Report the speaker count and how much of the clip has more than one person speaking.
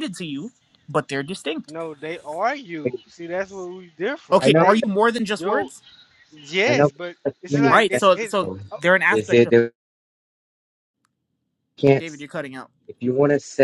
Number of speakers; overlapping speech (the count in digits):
3, about 18%